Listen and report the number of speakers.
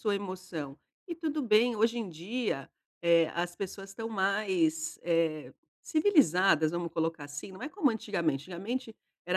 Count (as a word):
one